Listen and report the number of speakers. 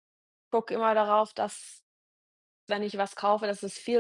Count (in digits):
1